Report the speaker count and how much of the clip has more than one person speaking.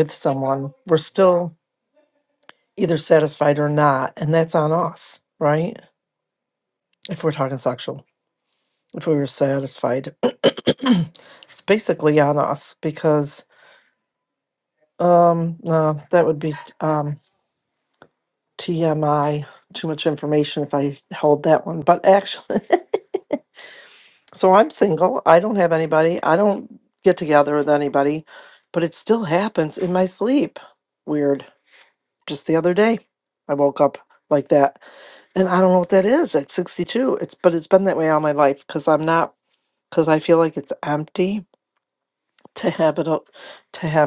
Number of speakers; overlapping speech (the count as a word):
one, no overlap